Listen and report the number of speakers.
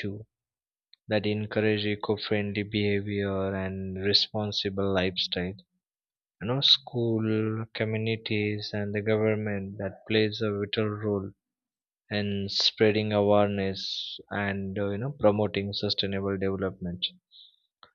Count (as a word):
one